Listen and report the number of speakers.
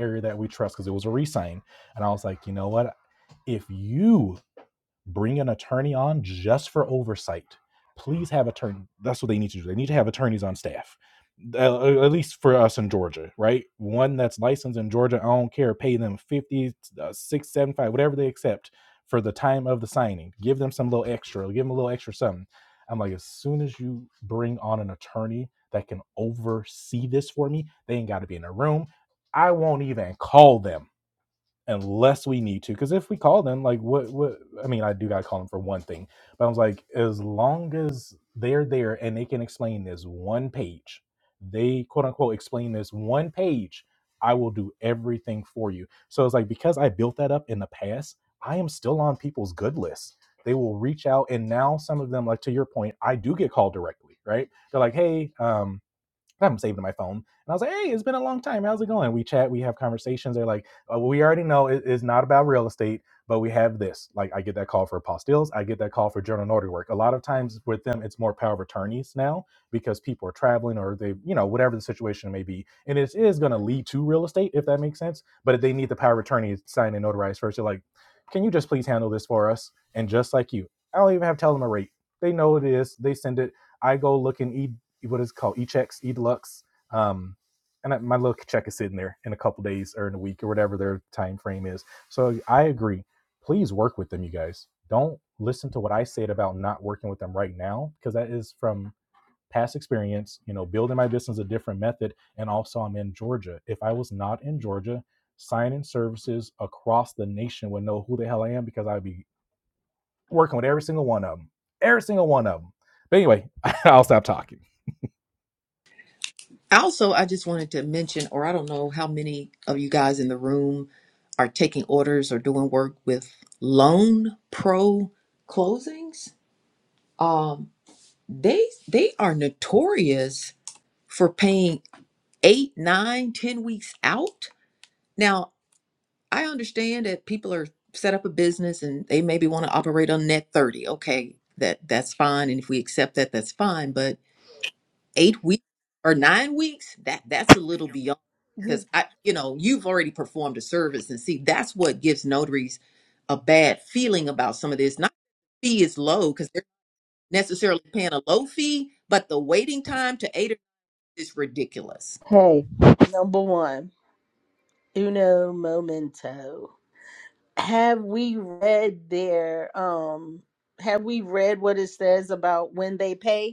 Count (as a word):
three